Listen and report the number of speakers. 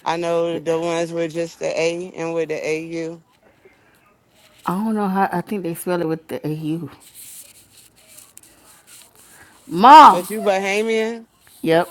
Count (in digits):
2